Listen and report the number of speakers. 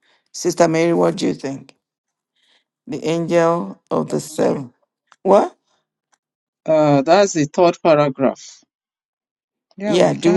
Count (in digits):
2